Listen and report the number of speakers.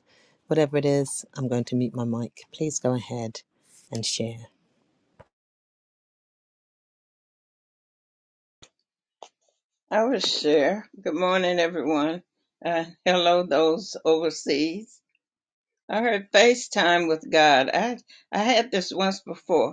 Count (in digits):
2